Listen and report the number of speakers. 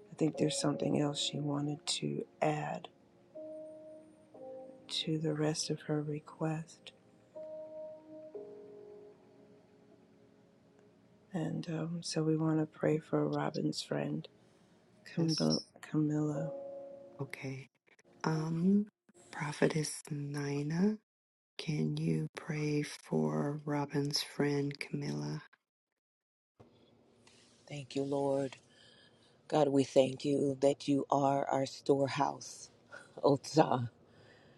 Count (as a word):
three